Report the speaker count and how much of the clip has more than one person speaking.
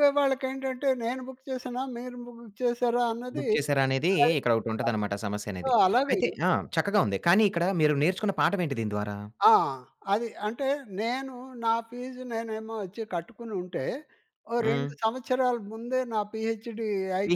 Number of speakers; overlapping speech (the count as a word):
two, about 6%